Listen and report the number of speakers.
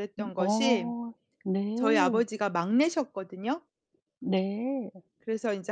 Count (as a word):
two